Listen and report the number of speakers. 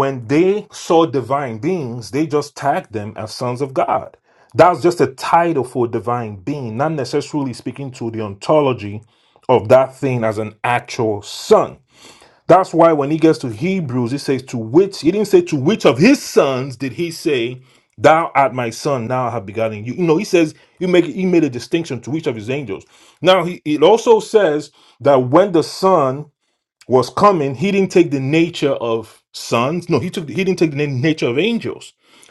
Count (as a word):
one